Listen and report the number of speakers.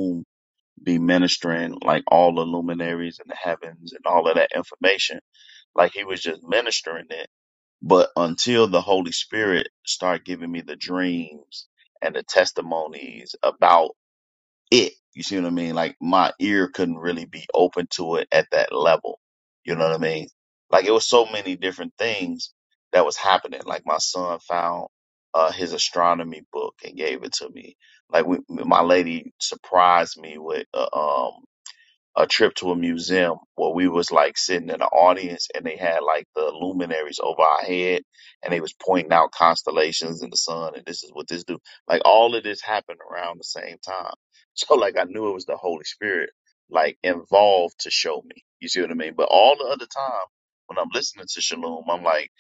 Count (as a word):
one